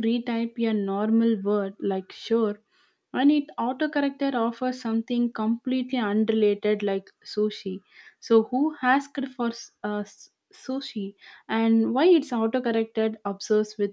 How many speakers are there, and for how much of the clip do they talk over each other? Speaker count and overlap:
one, no overlap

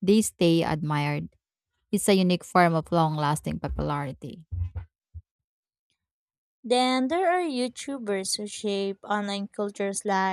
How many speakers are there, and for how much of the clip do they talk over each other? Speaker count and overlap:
two, no overlap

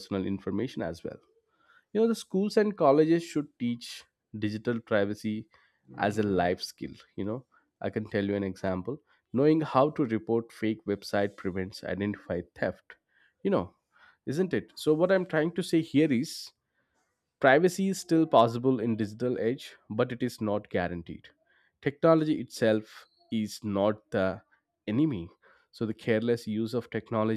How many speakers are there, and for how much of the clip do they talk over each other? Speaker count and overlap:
one, no overlap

